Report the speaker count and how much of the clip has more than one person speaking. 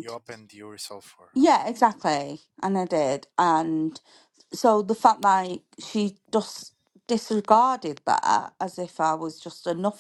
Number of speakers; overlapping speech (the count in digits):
2, about 2%